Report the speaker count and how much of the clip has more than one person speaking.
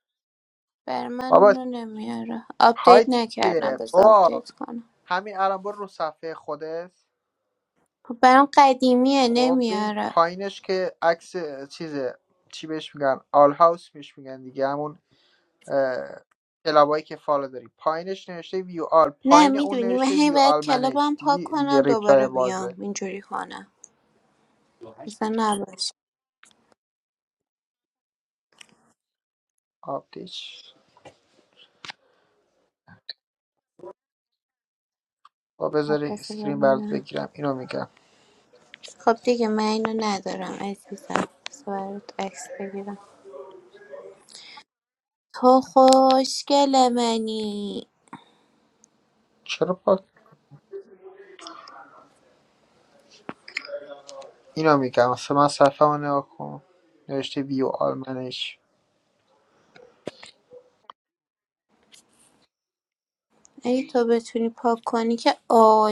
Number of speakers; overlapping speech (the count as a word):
two, about 10%